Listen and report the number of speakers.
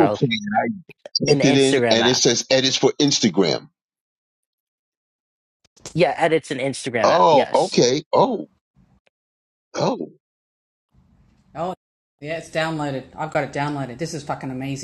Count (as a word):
three